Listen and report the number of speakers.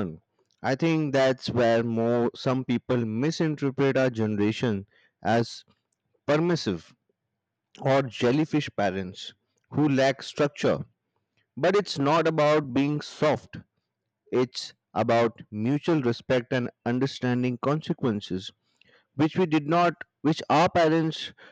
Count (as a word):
one